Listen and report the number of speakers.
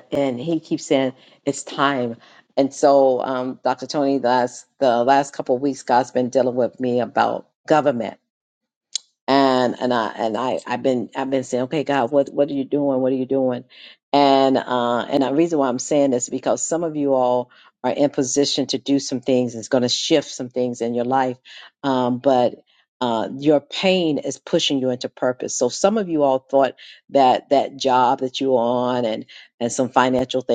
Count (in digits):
1